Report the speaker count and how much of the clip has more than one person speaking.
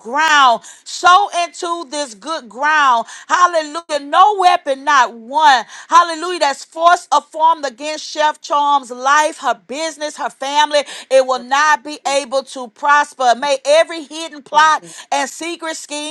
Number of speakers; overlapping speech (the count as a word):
one, no overlap